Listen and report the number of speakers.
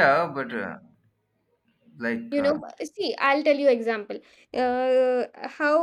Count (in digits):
2